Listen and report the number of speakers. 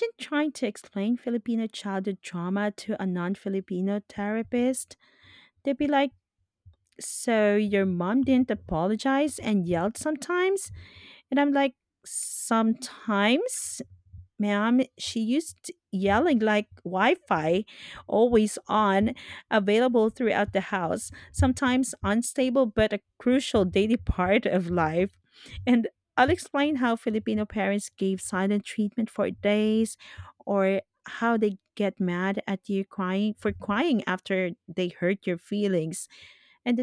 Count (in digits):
1